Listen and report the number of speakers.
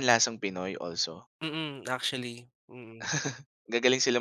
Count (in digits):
2